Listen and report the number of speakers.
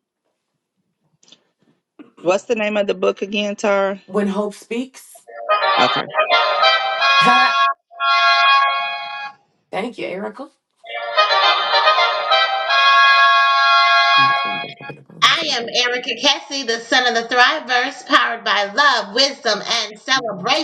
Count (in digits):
3